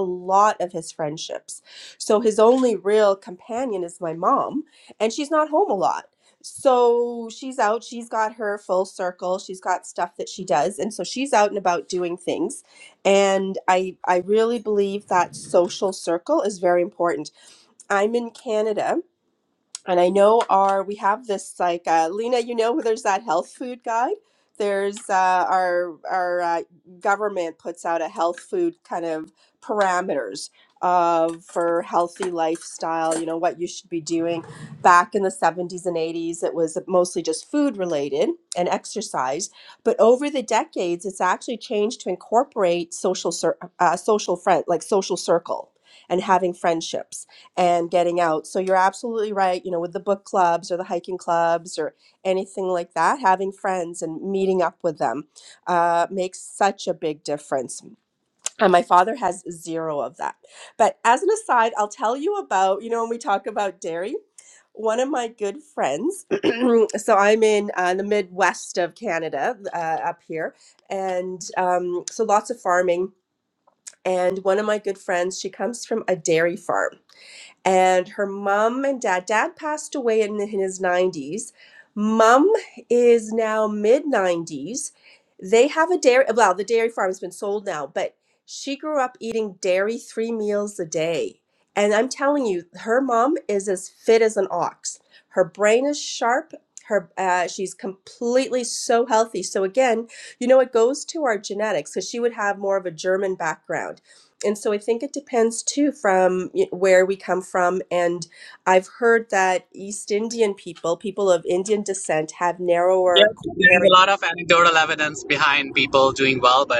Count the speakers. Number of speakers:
2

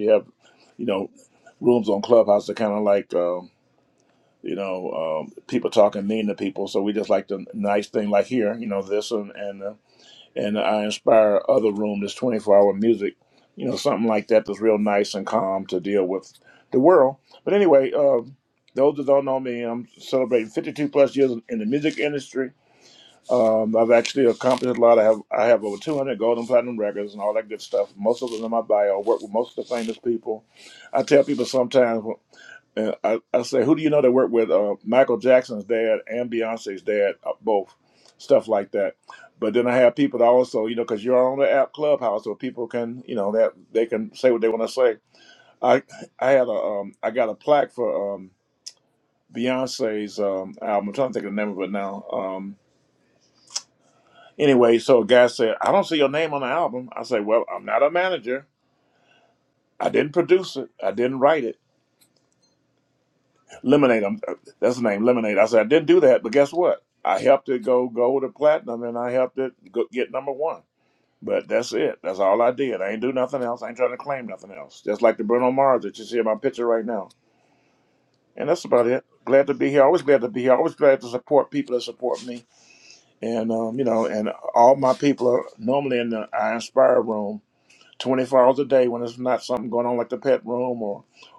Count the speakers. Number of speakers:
1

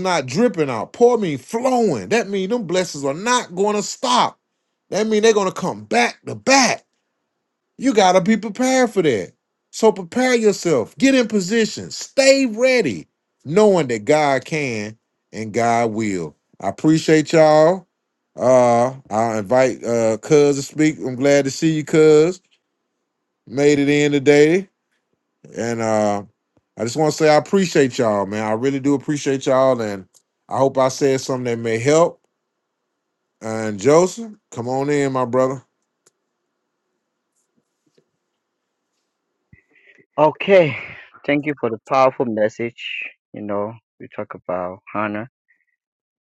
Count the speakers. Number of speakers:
2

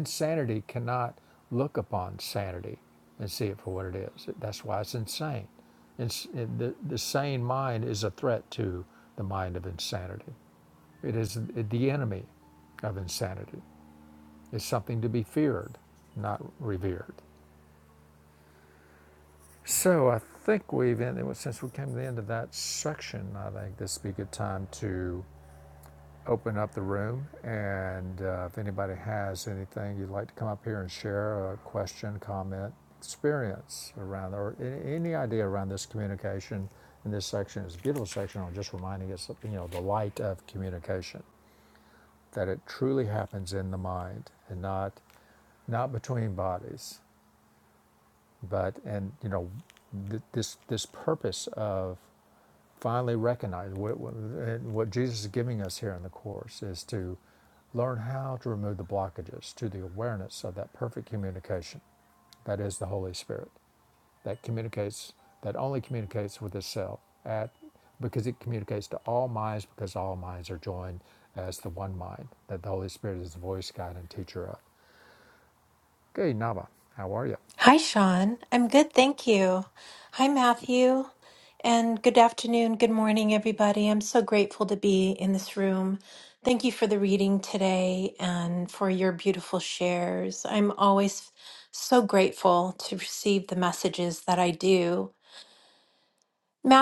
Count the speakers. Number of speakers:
2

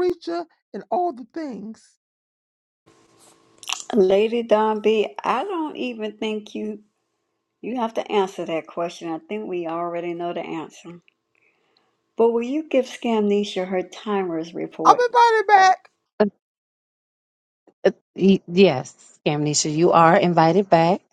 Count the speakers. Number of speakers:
3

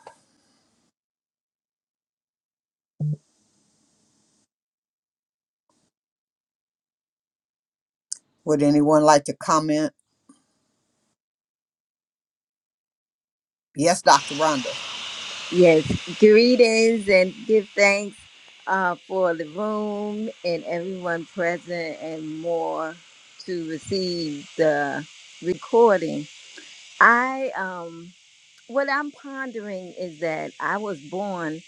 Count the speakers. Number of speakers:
2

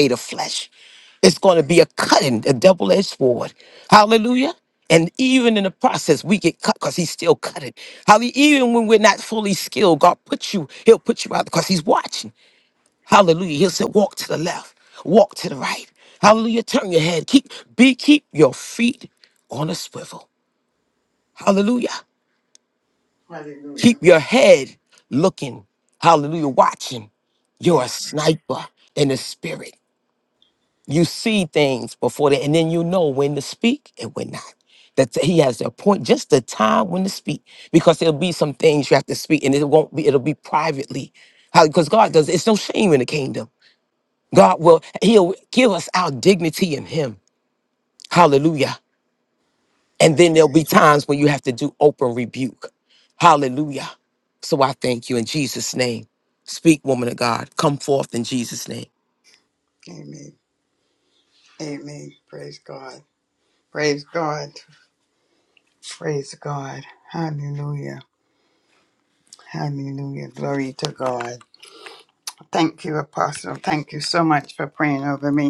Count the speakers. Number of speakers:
2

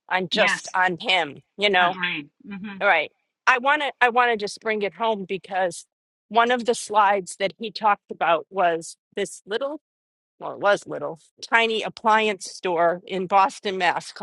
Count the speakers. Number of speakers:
2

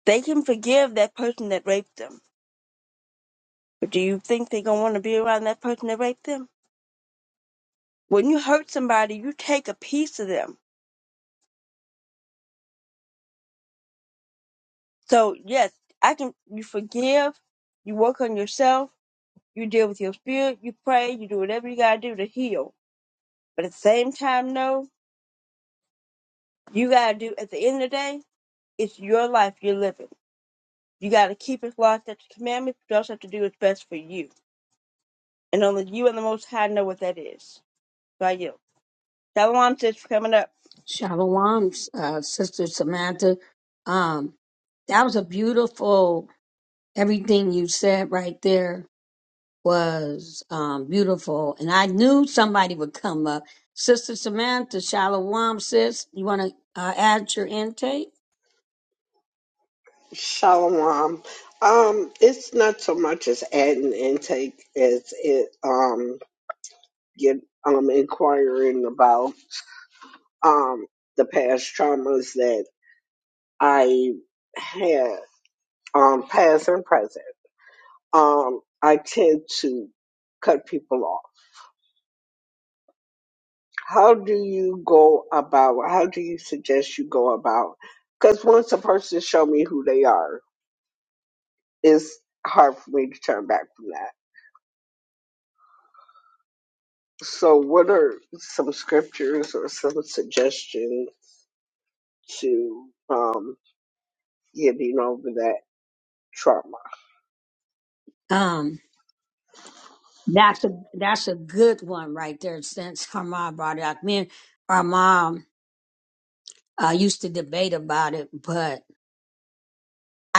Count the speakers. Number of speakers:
3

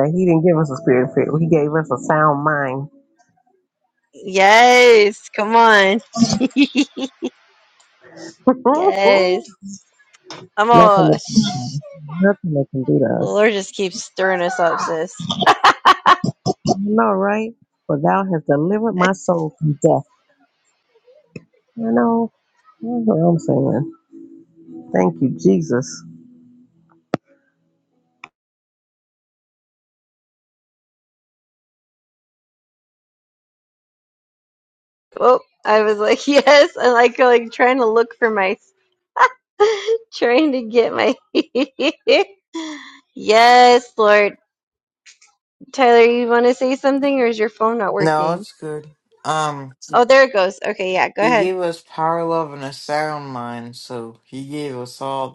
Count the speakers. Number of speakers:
3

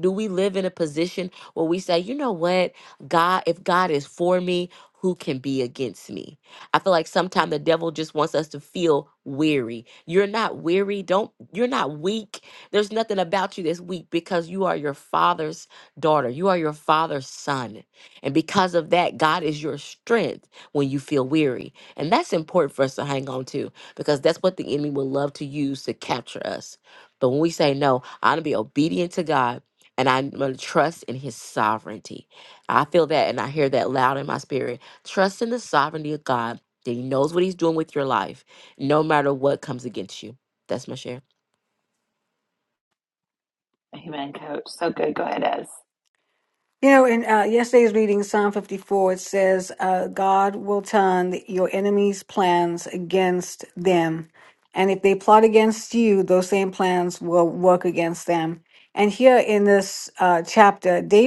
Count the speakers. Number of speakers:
3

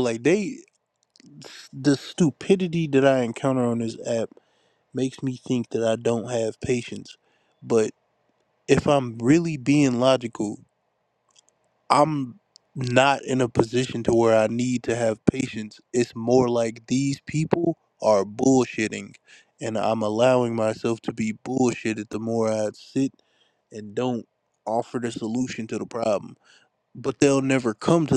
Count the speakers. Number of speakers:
1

